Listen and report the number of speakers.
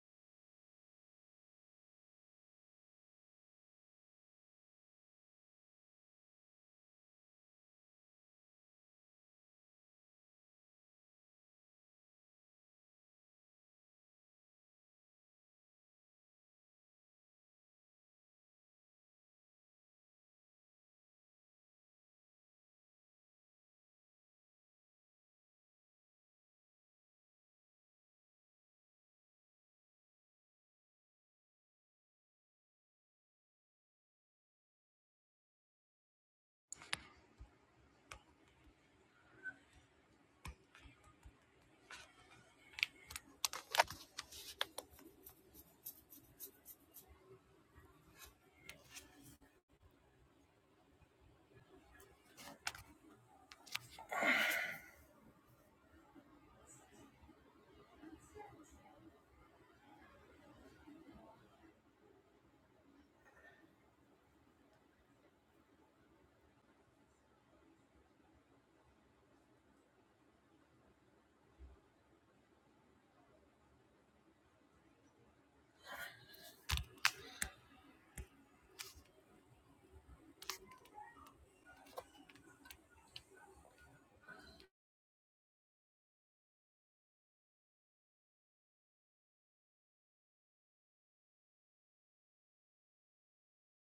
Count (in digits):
0